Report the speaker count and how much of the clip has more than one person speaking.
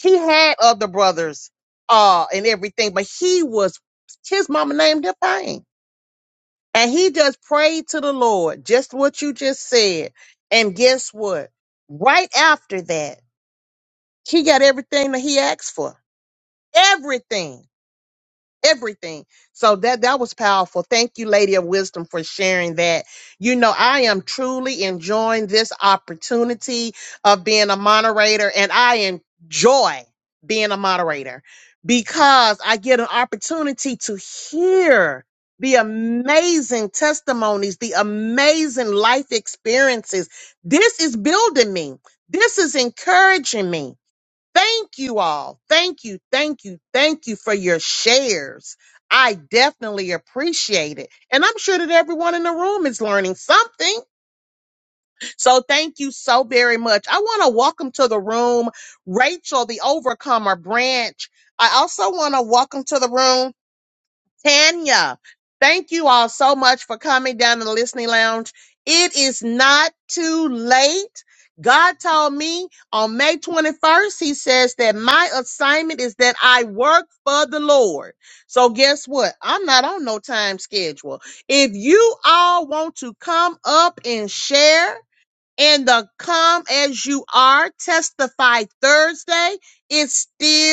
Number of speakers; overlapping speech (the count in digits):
1, no overlap